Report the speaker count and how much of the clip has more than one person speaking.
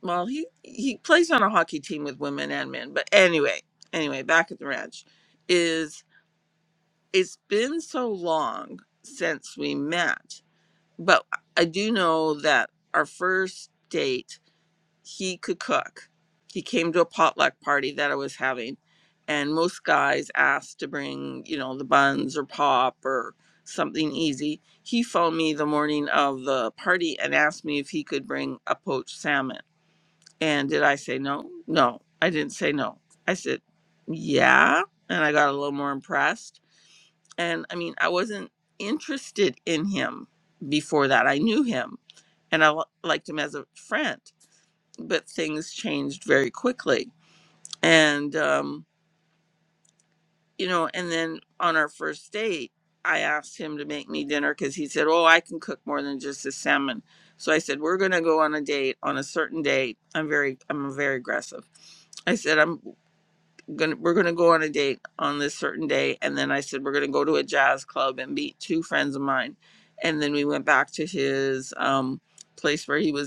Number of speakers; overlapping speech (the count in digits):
1, no overlap